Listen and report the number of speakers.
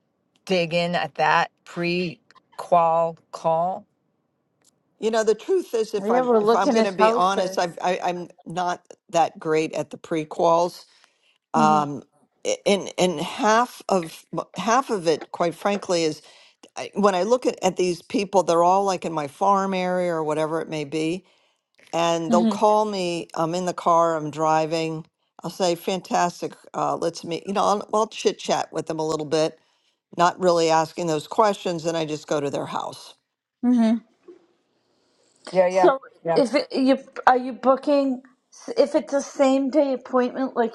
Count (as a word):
three